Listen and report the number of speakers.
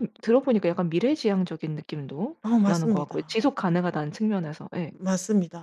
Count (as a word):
two